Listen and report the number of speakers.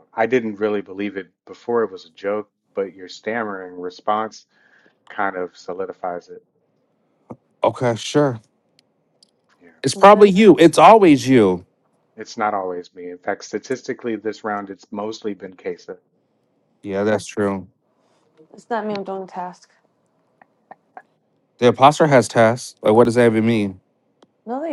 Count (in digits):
3